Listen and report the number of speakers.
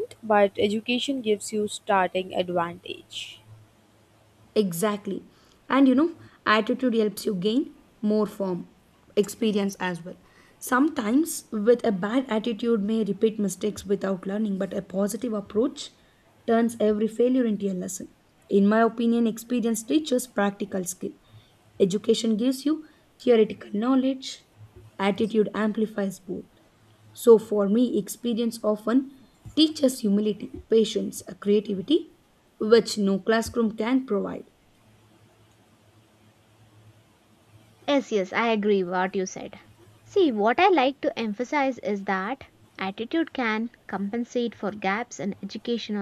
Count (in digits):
3